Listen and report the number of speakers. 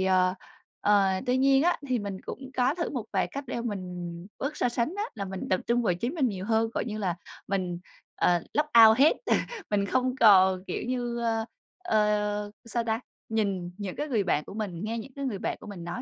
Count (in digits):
1